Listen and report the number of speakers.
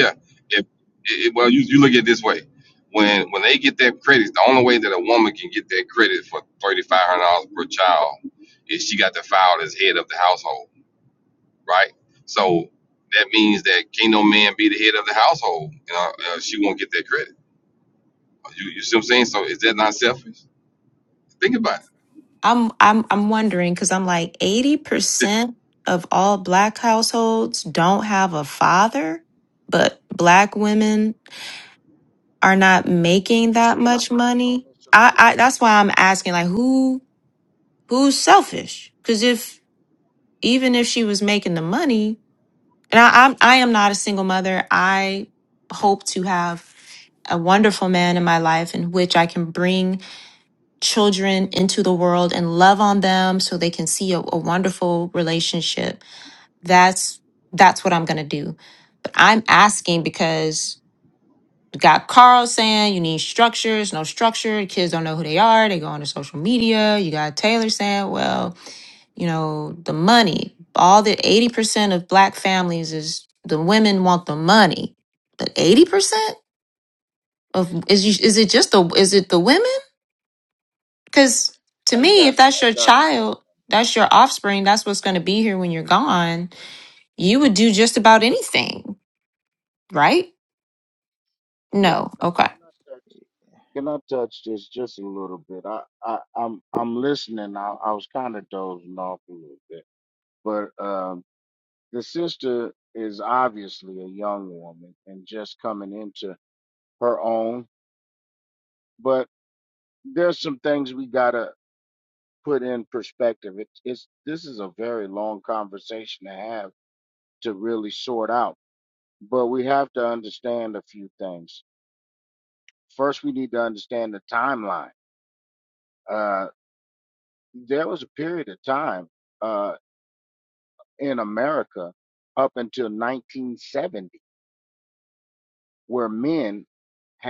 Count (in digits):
3